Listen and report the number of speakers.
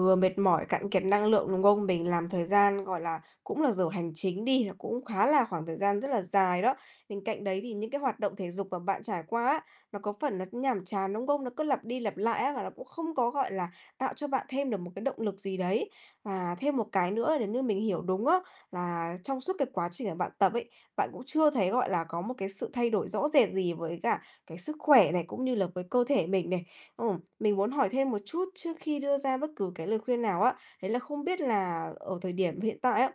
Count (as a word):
one